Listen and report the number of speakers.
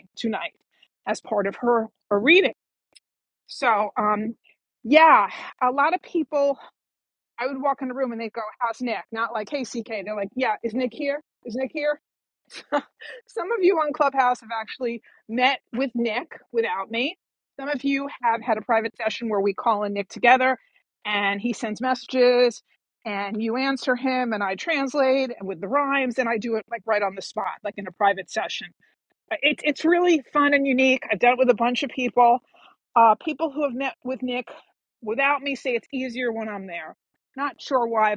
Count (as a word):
one